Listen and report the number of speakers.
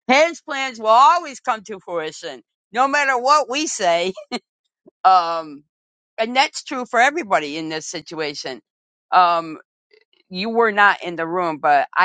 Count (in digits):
1